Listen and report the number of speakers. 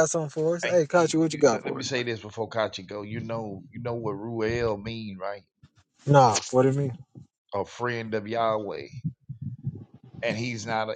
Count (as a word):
two